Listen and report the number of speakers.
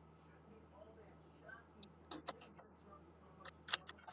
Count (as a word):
zero